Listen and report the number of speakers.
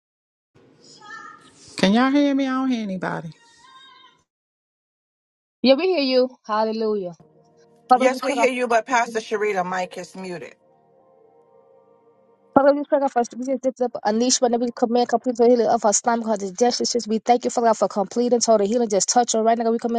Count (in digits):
3